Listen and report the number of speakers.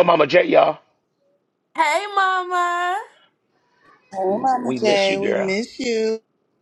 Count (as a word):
three